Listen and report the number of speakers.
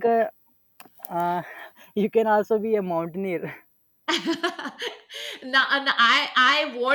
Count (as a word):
two